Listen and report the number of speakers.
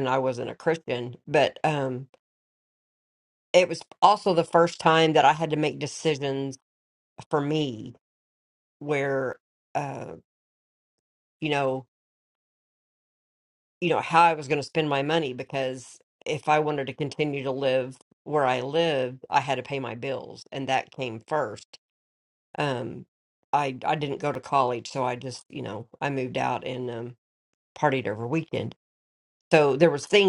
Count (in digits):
1